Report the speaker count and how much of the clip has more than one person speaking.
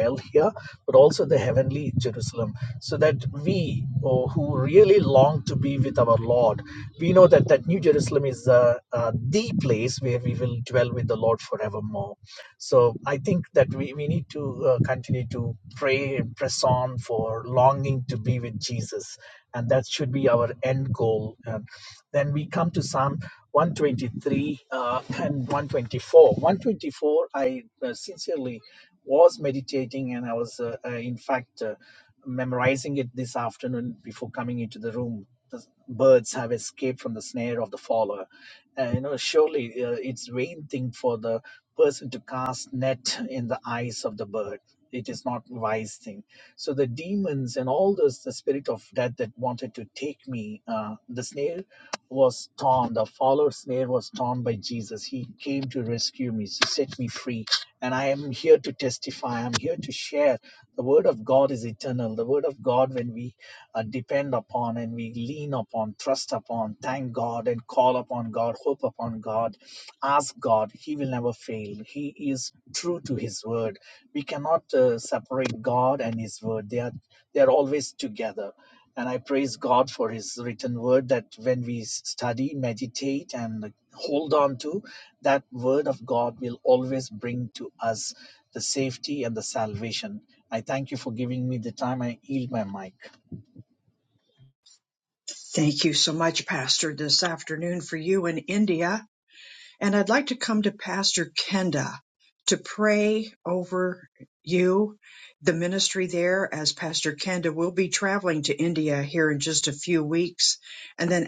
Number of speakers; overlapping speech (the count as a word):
two, no overlap